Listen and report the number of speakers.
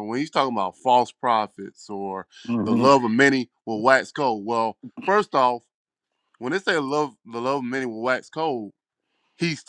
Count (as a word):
one